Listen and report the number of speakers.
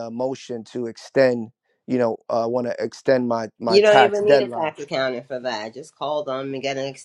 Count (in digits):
2